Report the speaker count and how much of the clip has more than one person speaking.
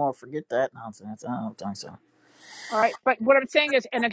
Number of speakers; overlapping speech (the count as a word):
two, no overlap